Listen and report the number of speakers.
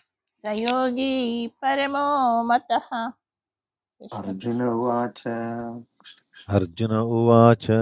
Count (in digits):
3